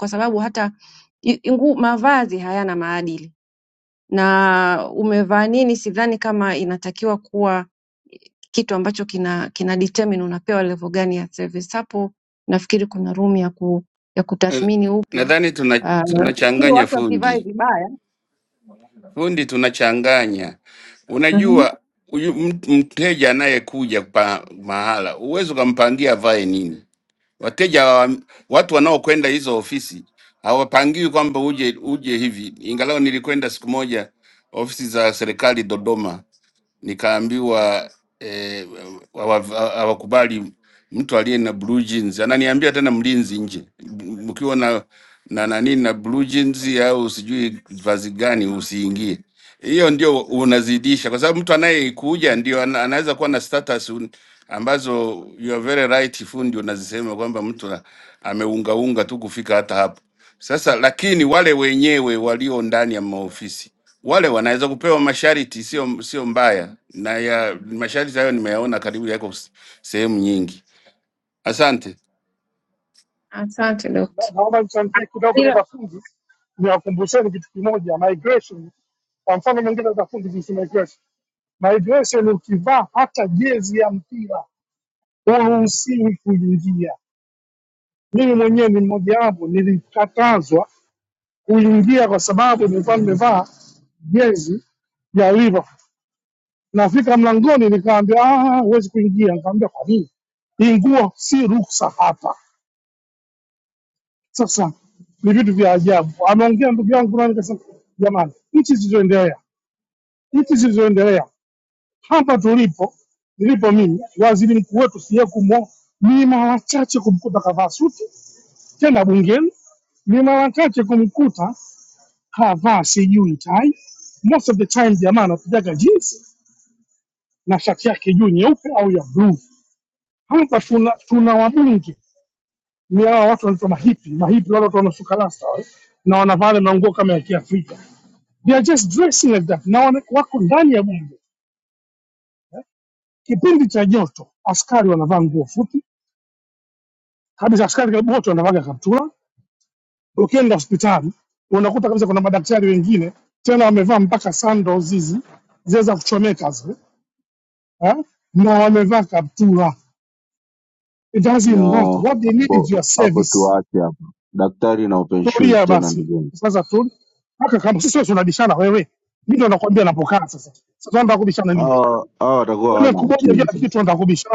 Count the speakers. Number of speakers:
4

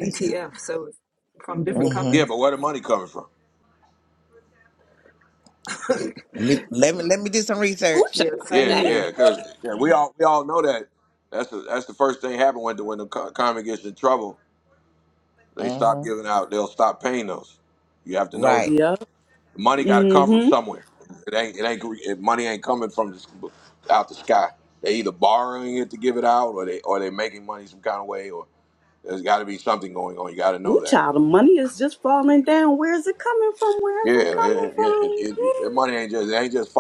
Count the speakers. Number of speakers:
4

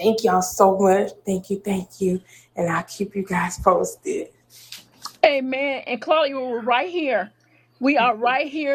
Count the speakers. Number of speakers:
2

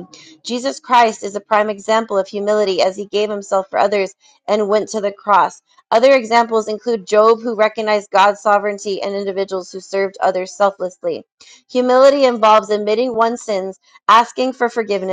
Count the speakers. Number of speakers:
1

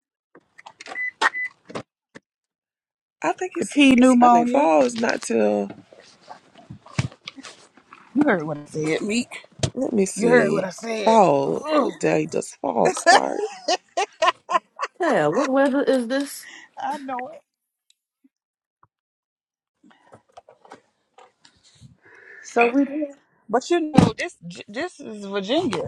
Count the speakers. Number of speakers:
3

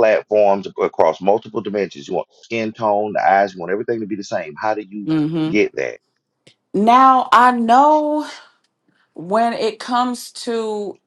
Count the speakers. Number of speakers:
2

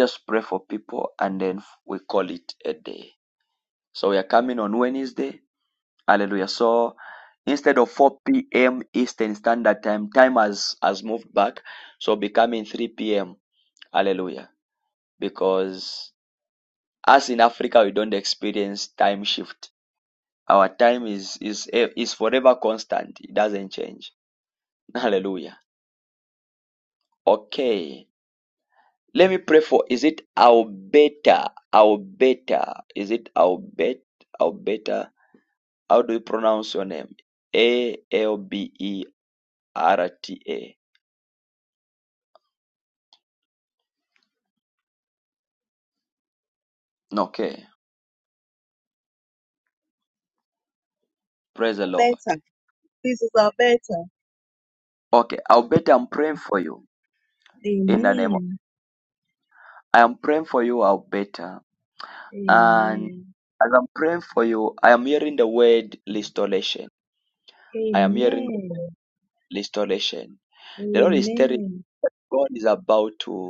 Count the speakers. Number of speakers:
2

